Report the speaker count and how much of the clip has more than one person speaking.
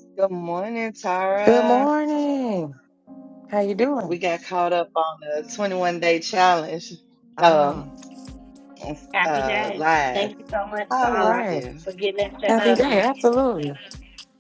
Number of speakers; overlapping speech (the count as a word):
three, about 24%